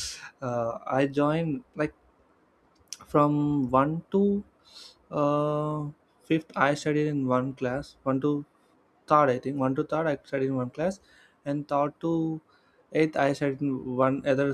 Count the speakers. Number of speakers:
1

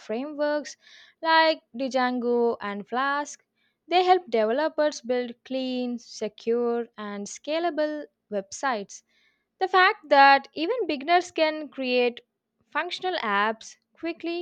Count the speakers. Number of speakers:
1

